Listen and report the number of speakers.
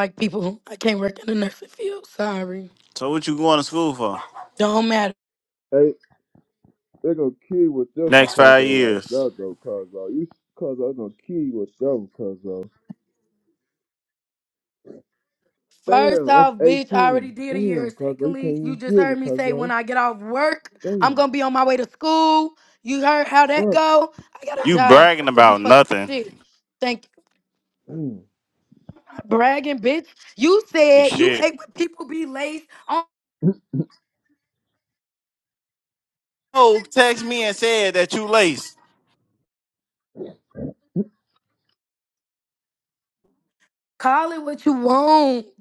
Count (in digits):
3